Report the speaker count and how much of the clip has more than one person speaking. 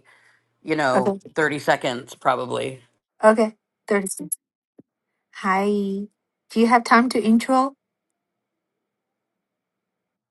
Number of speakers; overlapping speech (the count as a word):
two, about 2%